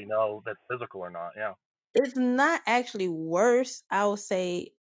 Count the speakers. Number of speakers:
two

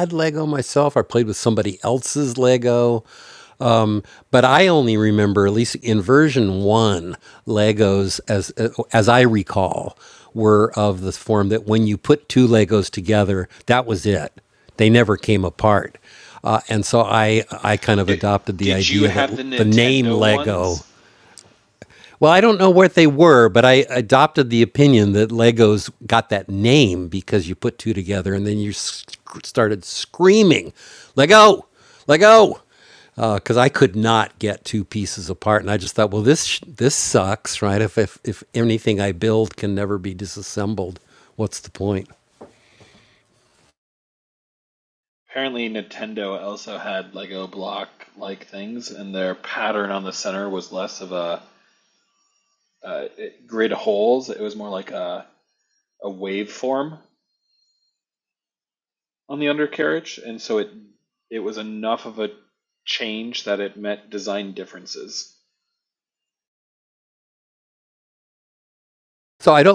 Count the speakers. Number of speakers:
two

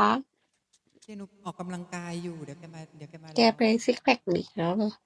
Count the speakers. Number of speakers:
two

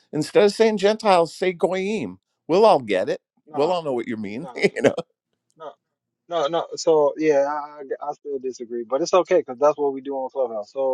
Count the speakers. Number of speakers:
two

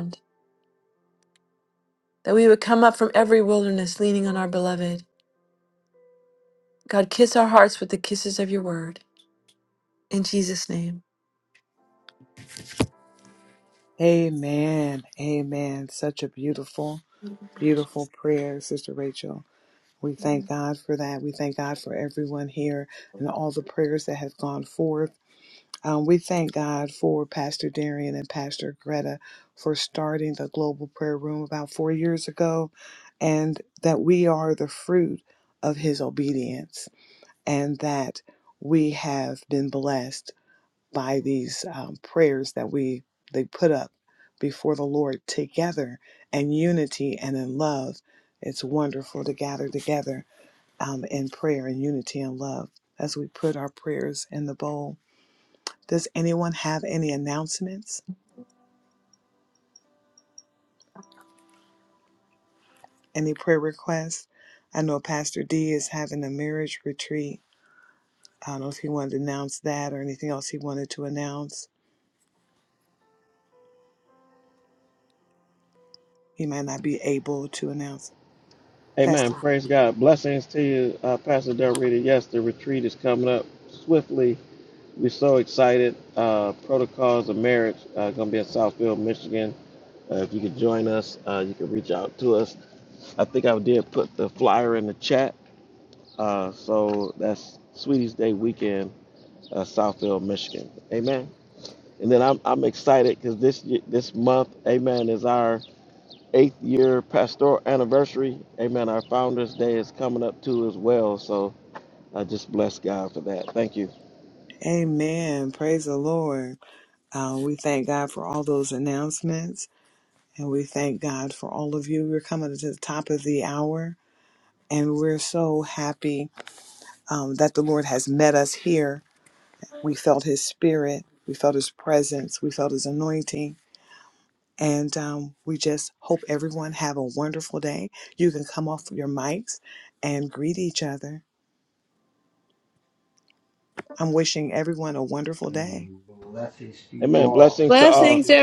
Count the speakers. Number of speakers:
four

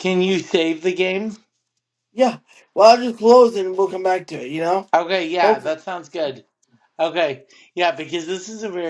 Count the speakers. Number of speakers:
two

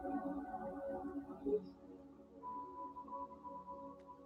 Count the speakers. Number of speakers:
zero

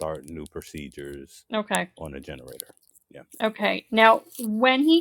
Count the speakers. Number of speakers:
two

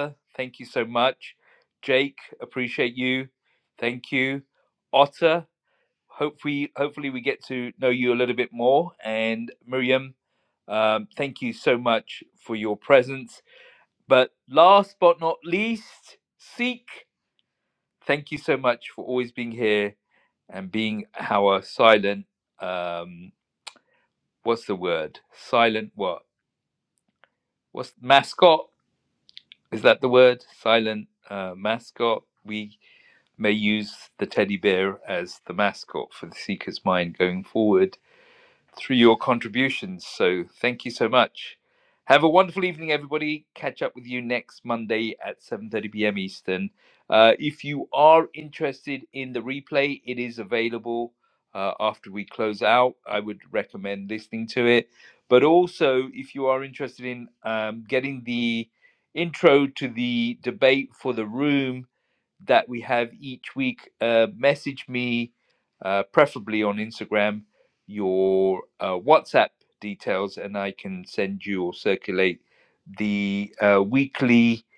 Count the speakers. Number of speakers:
one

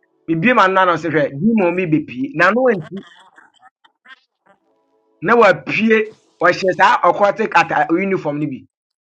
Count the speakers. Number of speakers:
one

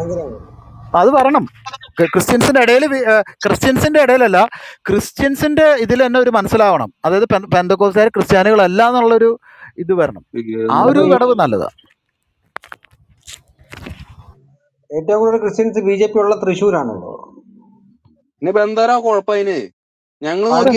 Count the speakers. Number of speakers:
three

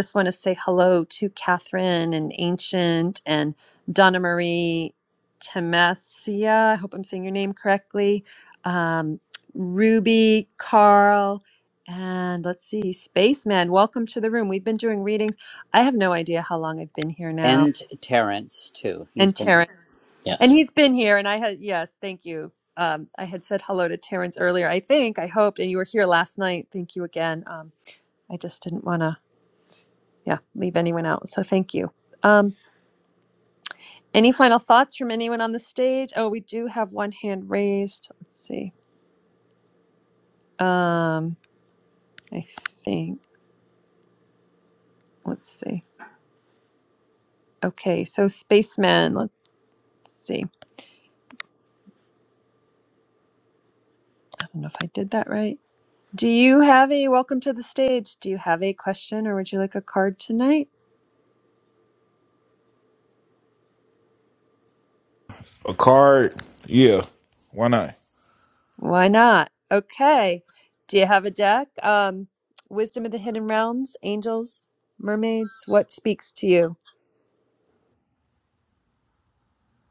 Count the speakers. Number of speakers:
three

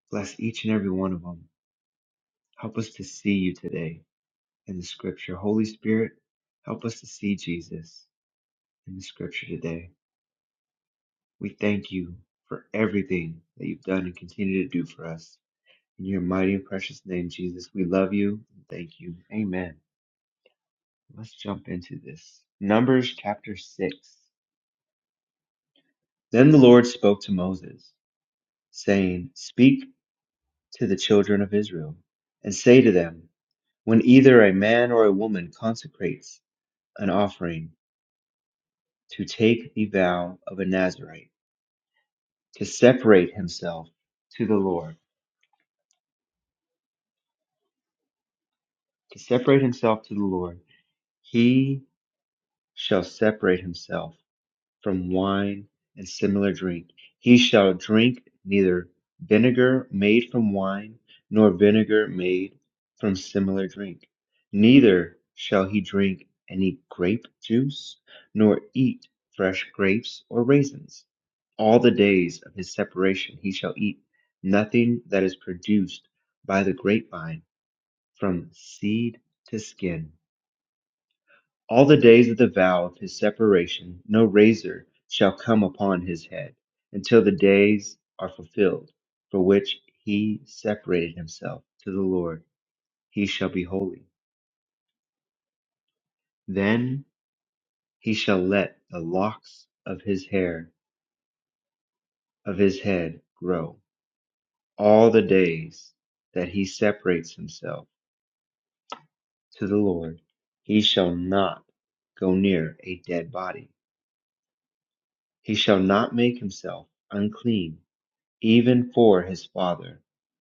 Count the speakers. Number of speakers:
one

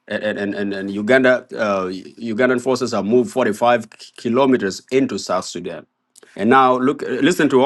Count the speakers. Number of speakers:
one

